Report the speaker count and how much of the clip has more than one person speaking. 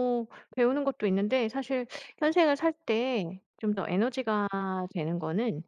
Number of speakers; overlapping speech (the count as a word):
one, no overlap